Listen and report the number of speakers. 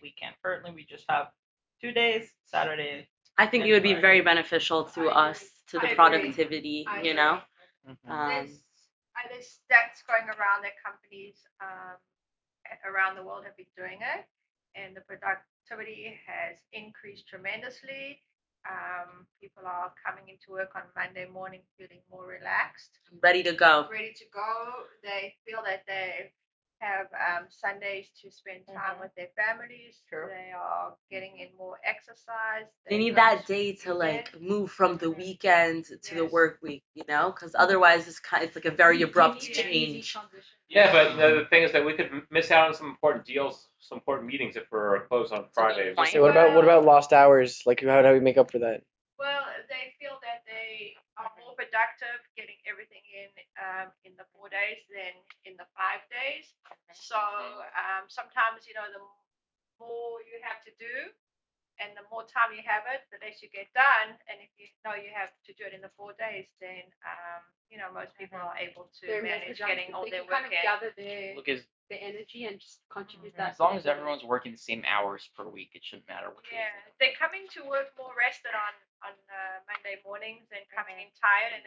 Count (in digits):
7